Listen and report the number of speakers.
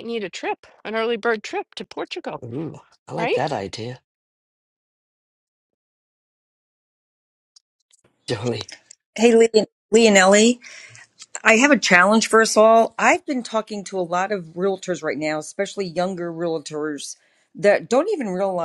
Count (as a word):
three